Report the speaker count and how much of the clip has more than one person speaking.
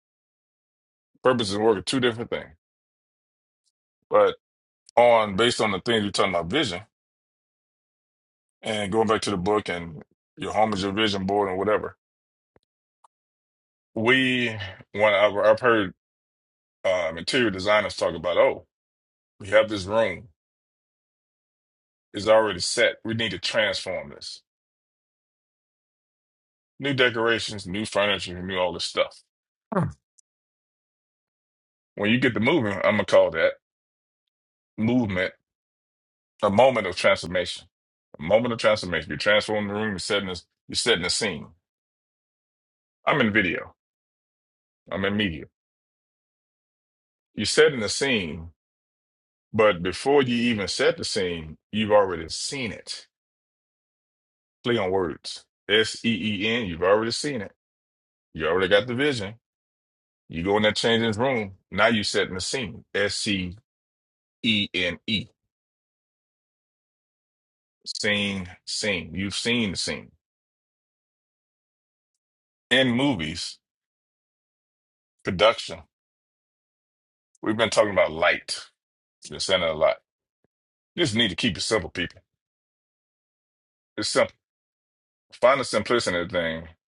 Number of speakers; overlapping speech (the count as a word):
one, no overlap